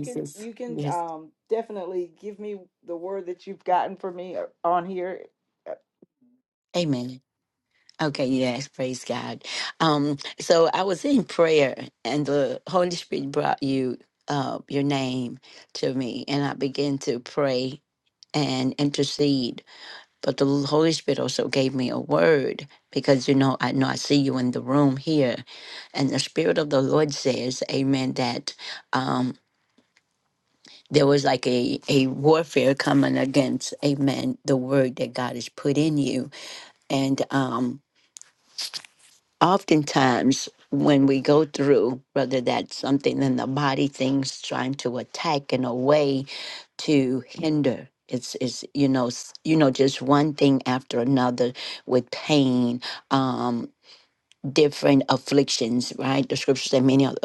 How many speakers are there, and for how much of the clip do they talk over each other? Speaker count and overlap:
2, about 1%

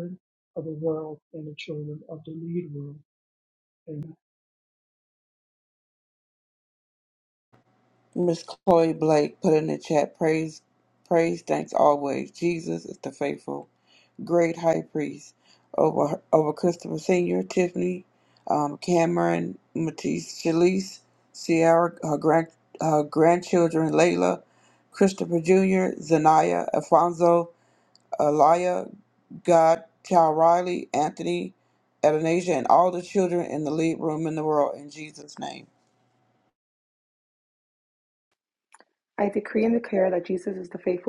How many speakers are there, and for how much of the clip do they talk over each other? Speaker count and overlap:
3, no overlap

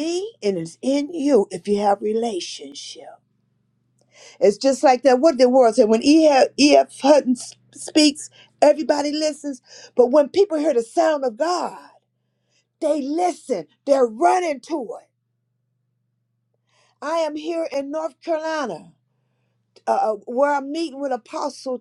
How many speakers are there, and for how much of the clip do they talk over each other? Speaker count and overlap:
1, no overlap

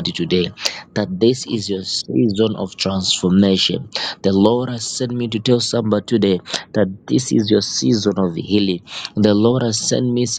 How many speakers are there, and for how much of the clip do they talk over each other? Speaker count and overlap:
1, no overlap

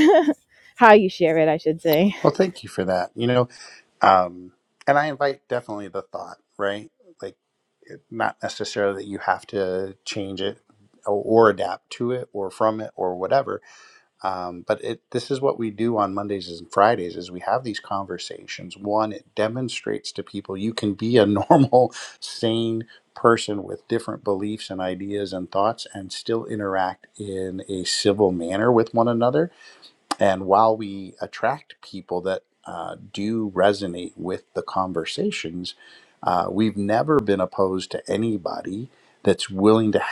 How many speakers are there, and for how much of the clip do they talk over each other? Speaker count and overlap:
2, no overlap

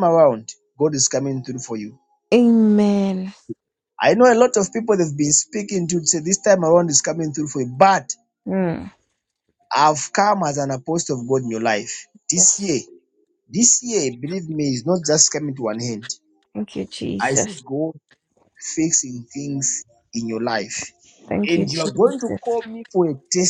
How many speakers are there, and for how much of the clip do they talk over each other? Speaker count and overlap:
2, about 7%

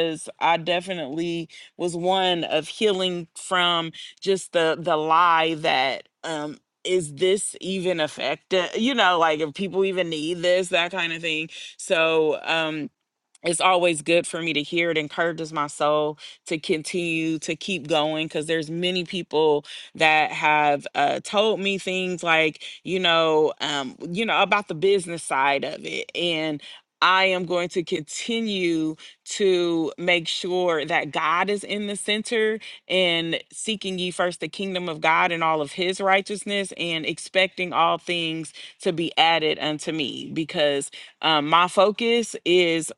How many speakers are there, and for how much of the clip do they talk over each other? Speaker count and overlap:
1, no overlap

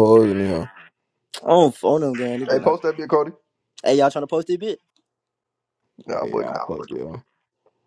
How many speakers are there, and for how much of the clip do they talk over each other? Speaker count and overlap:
3, about 8%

